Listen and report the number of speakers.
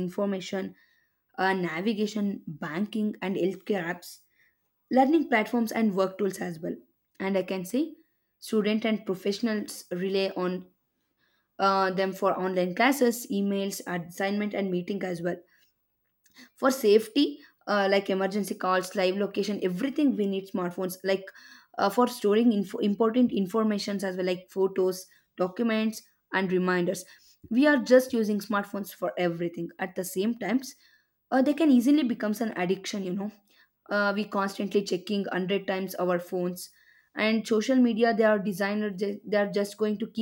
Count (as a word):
one